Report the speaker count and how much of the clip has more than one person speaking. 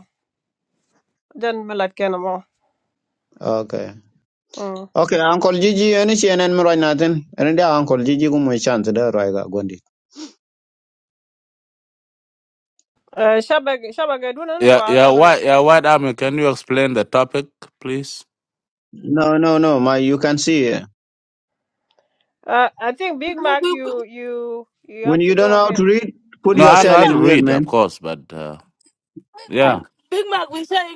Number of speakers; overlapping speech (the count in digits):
4, about 10%